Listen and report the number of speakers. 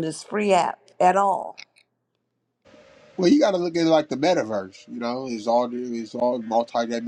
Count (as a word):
two